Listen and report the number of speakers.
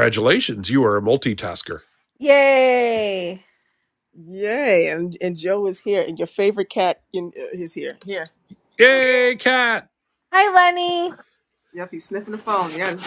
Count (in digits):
3